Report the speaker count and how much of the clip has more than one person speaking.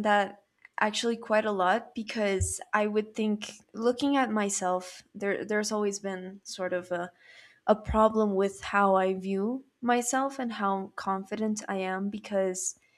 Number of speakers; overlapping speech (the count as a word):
one, no overlap